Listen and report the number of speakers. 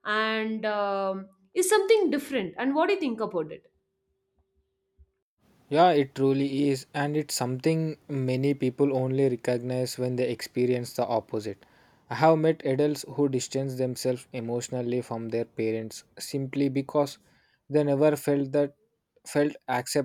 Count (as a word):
two